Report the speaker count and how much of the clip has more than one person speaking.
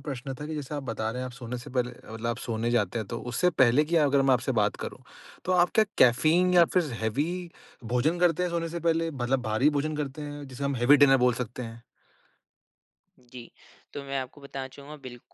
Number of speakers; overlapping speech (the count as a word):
two, about 1%